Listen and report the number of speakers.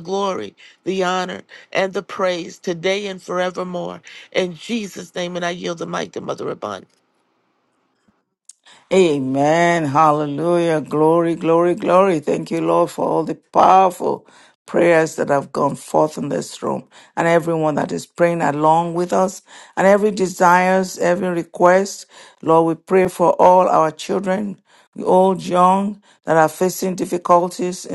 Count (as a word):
two